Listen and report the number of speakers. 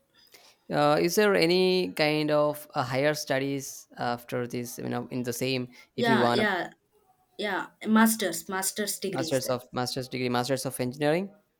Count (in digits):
2